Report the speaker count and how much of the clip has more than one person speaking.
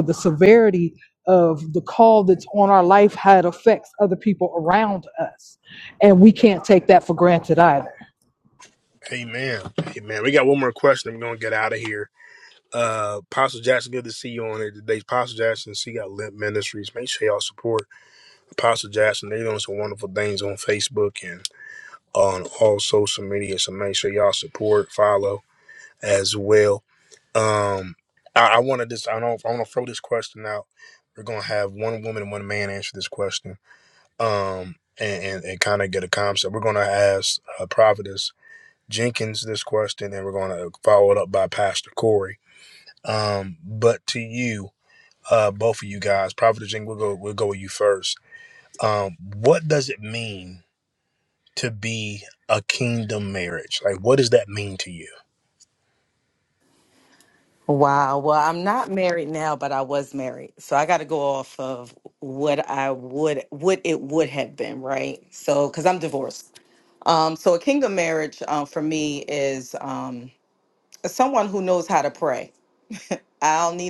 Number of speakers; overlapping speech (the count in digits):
3, no overlap